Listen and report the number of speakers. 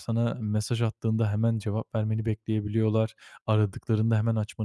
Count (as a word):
one